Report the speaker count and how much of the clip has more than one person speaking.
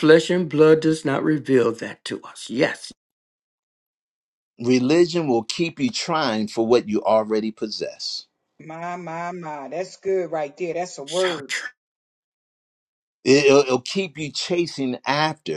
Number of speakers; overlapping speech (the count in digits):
3, about 3%